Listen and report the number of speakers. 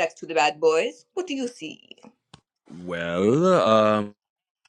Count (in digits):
2